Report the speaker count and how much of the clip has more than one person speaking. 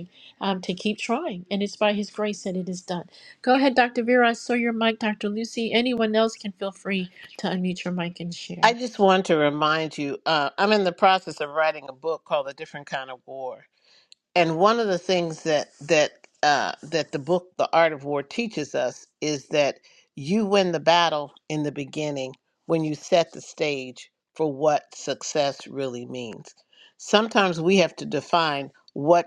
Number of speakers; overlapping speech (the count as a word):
two, under 1%